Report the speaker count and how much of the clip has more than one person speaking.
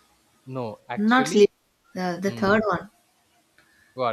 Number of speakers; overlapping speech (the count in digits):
2, about 20%